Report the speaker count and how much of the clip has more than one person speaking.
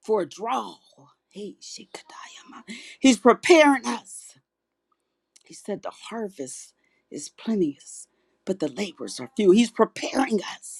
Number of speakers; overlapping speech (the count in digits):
1, no overlap